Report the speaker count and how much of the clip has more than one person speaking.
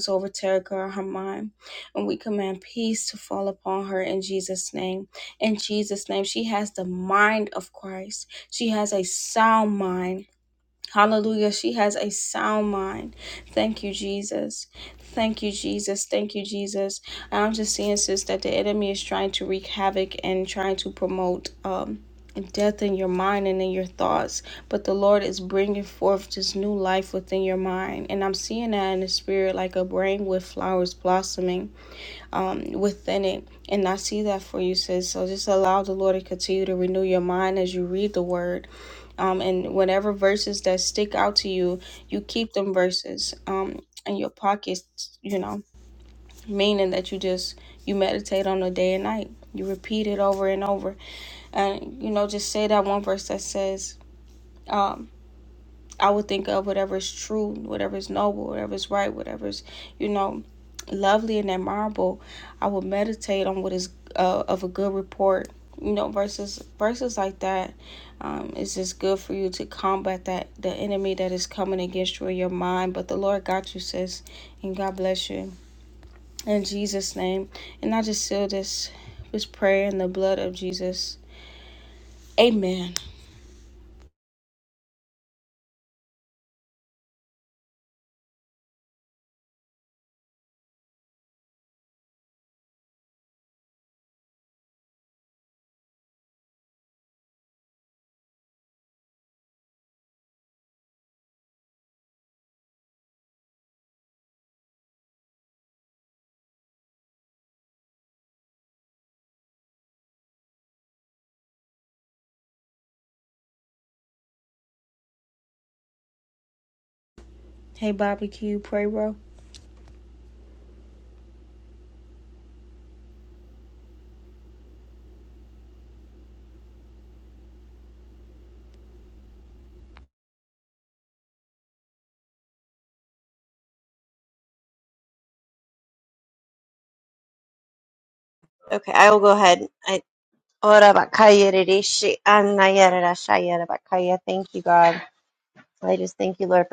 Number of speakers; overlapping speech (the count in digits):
2, no overlap